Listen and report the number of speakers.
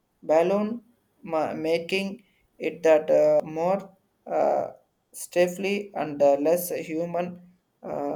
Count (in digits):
1